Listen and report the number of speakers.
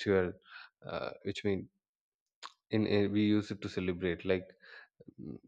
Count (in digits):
1